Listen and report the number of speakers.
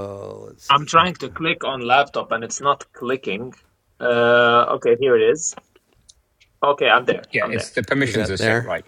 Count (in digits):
3